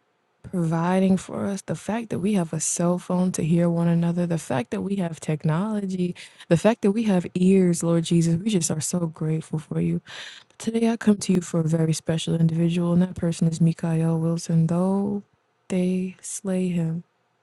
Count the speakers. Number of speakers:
1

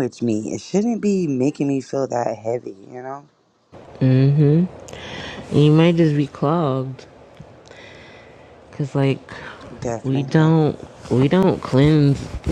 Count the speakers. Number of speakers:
2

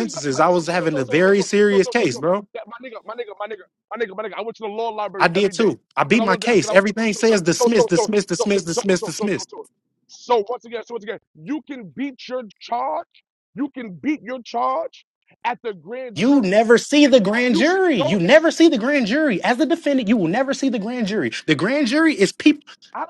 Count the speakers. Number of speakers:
2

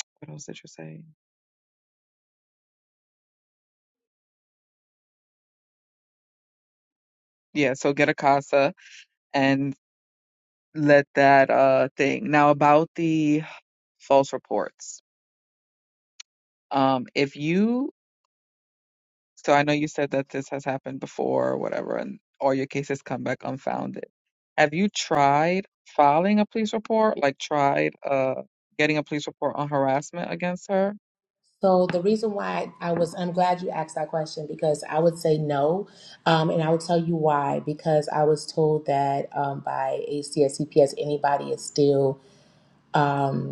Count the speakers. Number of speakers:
2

